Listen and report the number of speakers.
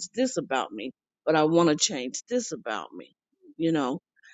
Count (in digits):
1